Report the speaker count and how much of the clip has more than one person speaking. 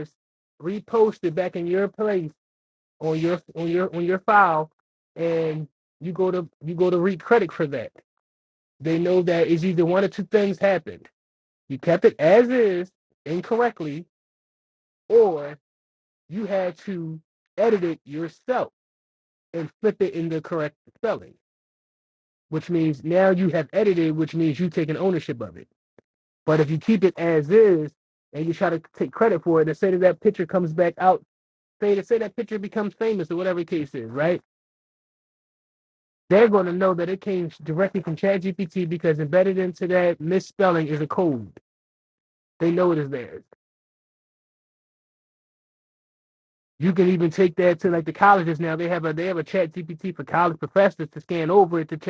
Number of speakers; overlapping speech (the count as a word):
one, no overlap